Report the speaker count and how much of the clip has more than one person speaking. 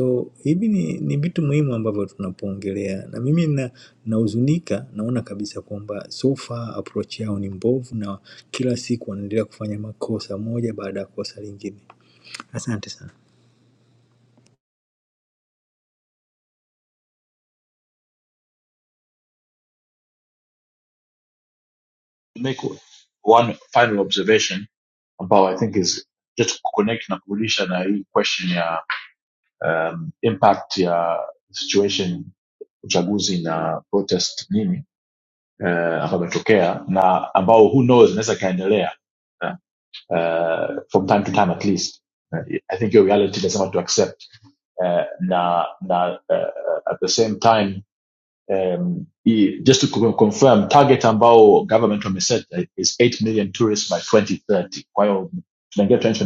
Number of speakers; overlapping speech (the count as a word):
two, no overlap